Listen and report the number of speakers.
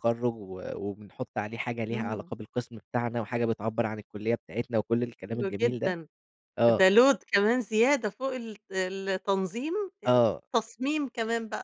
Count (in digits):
2